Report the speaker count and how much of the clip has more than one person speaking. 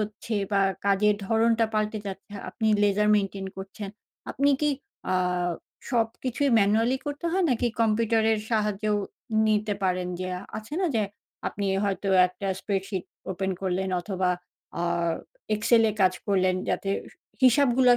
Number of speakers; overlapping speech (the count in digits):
1, no overlap